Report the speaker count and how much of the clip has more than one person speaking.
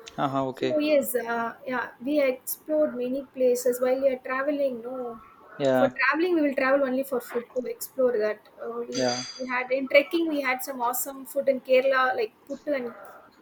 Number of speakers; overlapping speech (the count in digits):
2, about 3%